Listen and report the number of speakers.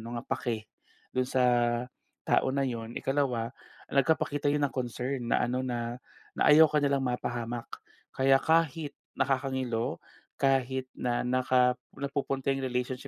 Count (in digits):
1